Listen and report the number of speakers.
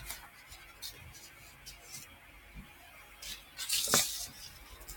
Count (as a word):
zero